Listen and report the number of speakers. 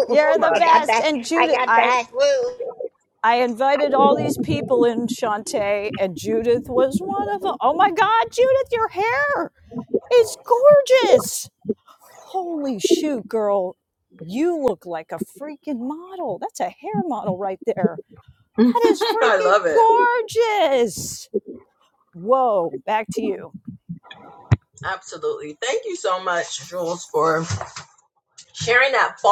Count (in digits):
3